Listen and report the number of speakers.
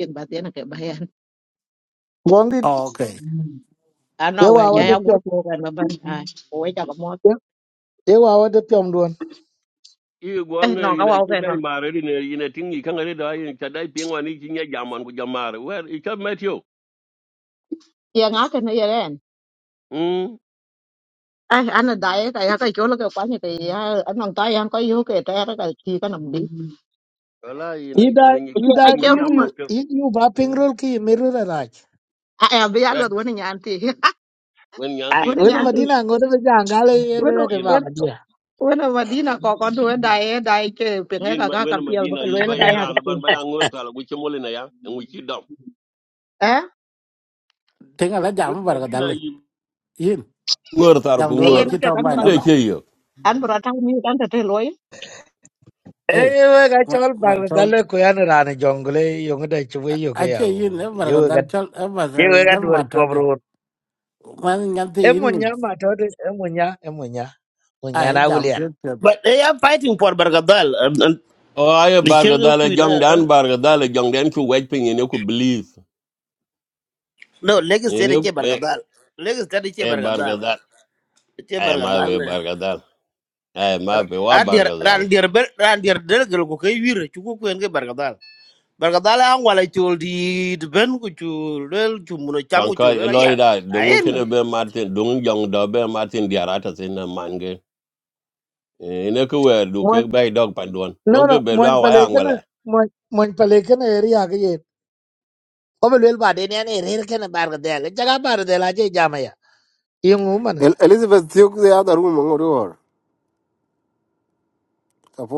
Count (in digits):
6